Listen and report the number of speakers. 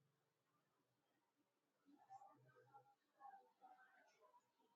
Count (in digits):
0